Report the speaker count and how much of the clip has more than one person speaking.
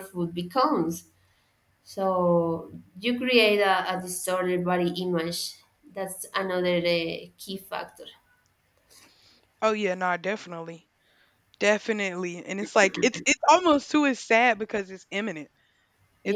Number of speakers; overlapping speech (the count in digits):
2, about 1%